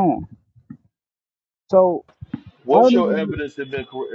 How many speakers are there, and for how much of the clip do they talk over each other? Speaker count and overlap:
two, about 16%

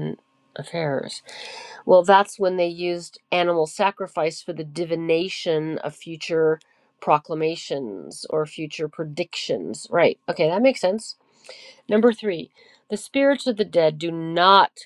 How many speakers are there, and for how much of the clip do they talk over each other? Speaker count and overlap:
one, no overlap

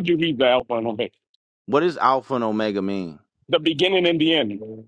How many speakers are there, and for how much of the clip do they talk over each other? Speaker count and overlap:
two, no overlap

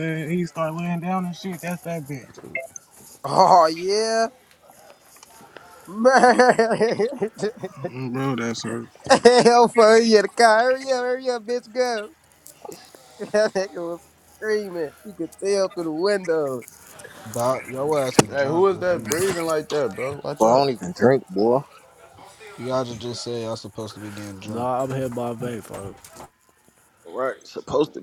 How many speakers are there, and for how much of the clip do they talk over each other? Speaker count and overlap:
six, about 5%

